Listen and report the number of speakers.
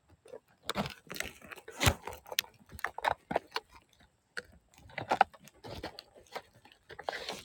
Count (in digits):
0